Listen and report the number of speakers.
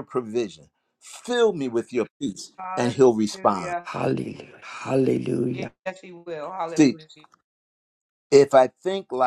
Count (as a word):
three